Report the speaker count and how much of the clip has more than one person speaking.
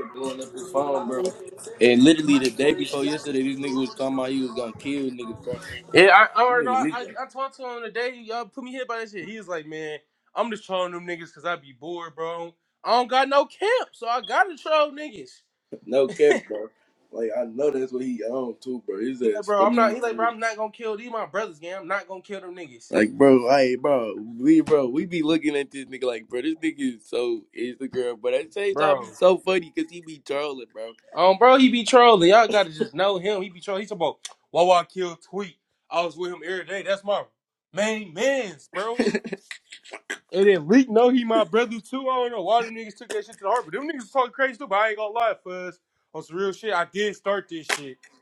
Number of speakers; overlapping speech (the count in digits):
2, about 4%